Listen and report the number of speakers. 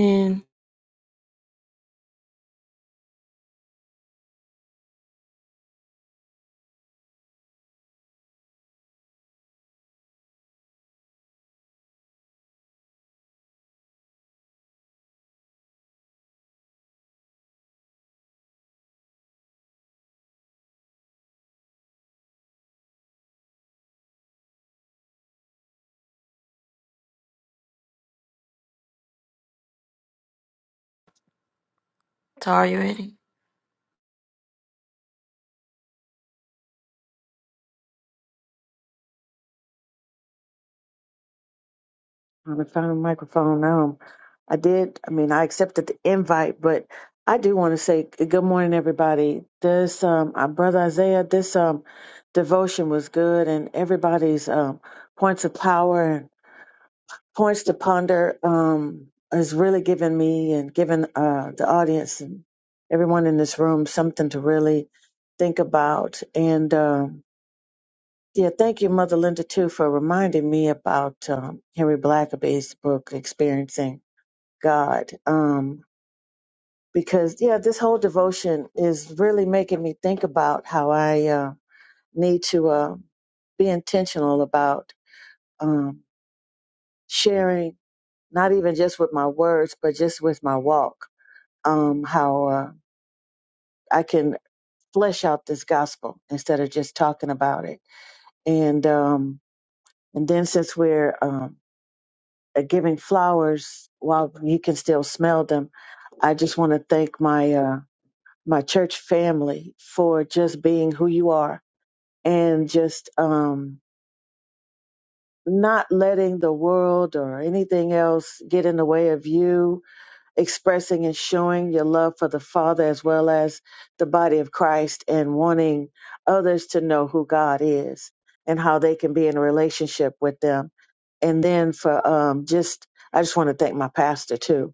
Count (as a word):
two